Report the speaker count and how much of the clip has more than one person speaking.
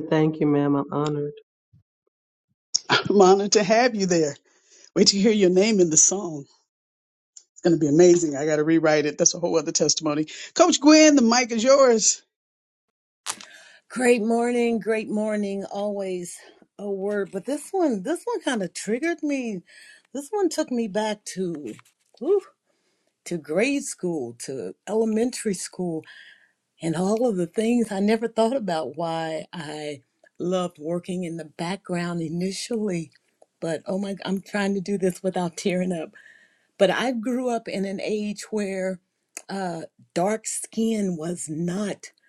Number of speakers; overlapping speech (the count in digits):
3, no overlap